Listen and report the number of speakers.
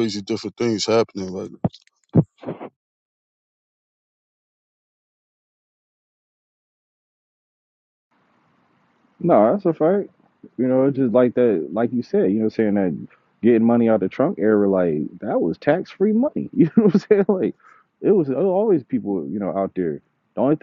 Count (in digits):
2